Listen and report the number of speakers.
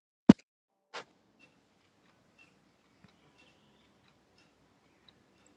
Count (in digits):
0